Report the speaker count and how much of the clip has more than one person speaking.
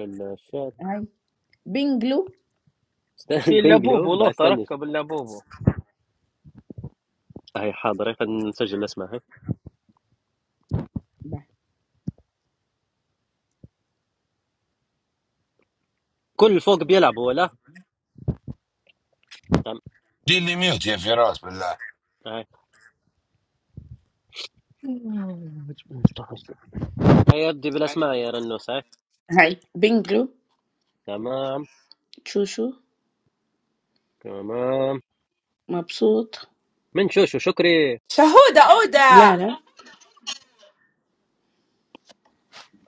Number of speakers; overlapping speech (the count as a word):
five, about 3%